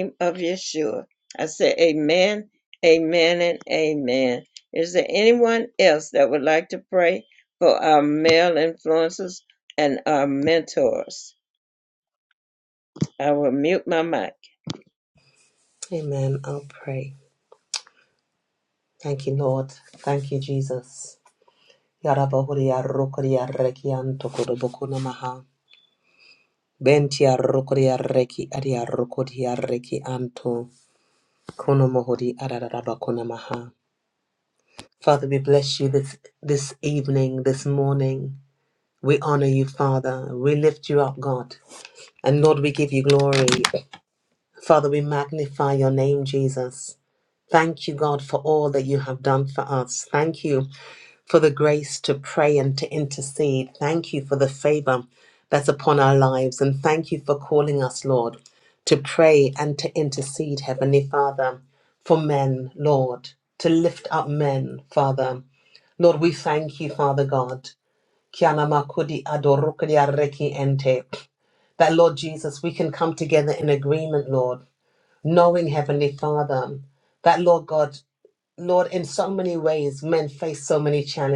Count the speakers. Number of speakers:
two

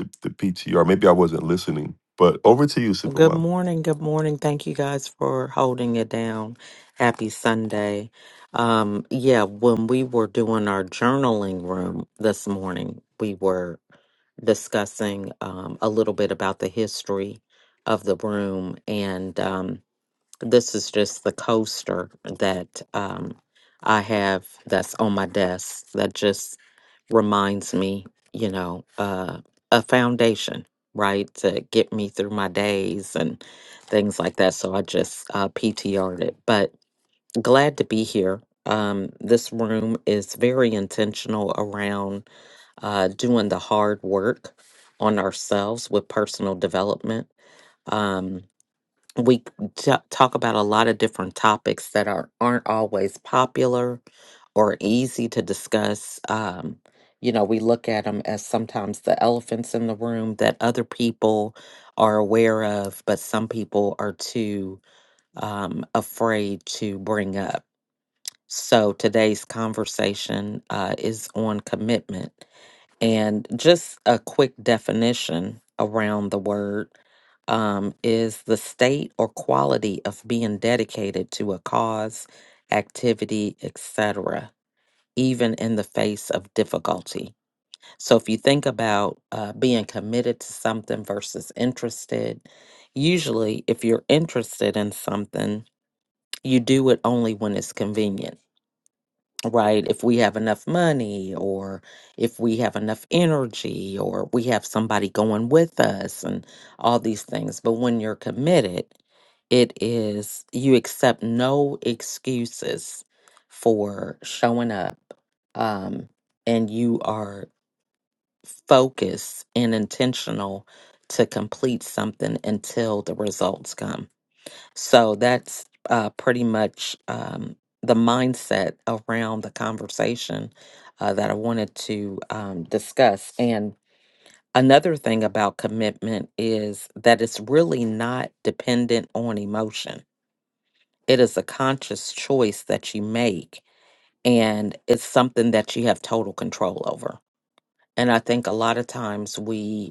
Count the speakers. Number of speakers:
two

